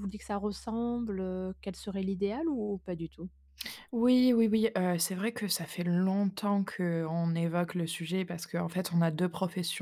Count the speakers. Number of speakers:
2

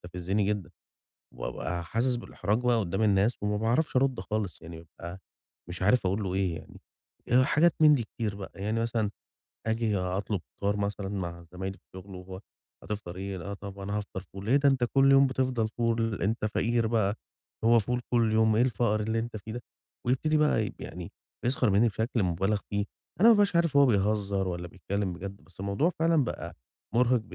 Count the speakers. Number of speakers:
1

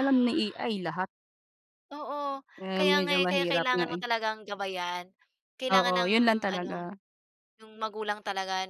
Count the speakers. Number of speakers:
2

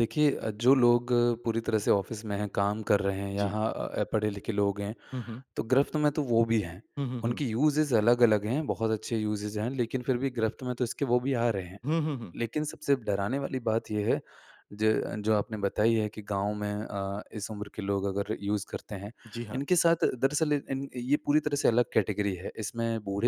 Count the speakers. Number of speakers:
2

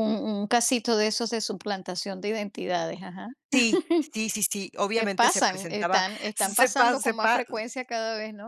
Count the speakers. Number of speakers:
2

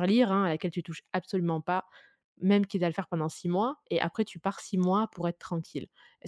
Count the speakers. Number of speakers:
1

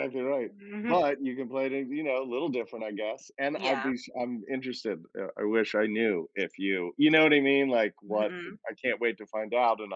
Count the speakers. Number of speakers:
2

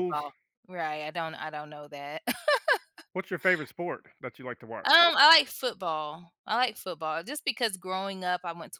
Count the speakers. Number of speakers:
2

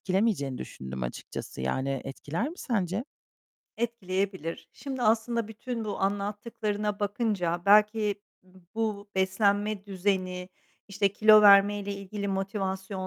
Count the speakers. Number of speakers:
2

